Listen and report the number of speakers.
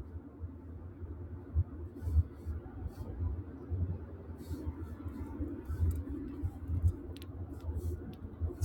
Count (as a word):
zero